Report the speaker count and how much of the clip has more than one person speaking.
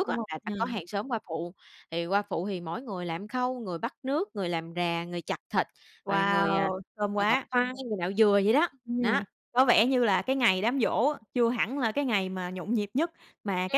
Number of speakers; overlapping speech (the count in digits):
2, about 13%